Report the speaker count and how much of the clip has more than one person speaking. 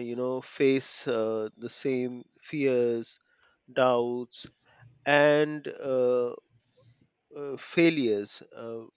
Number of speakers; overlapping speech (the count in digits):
1, no overlap